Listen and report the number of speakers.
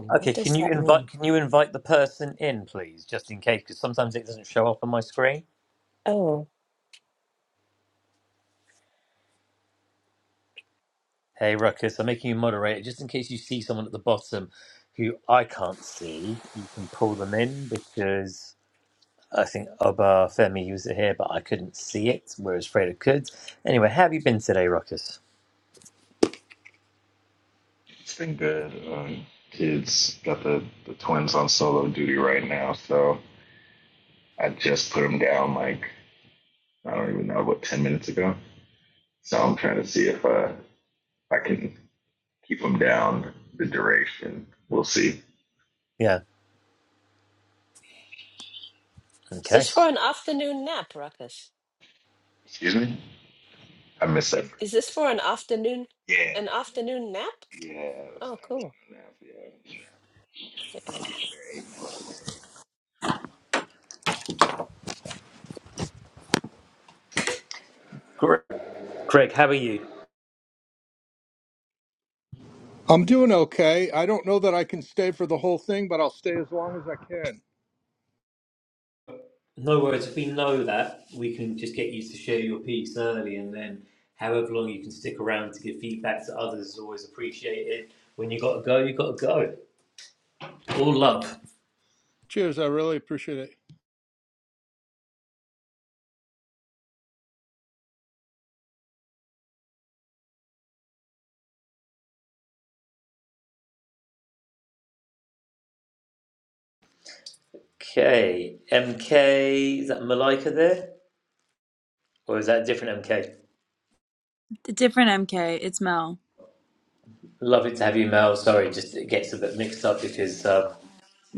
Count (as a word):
five